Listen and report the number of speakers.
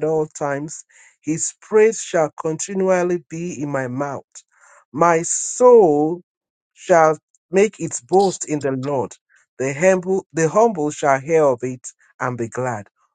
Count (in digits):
1